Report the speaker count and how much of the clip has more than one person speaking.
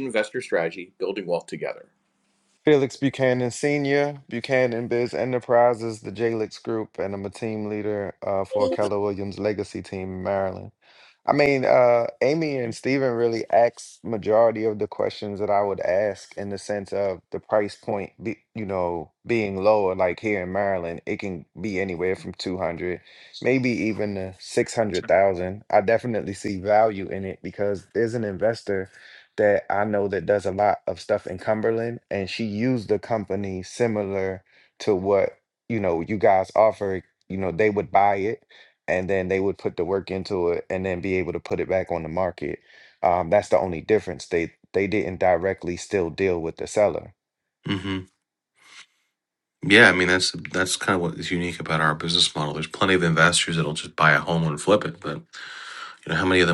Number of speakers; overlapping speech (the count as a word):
three, no overlap